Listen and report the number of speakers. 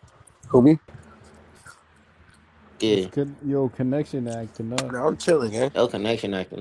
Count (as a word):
three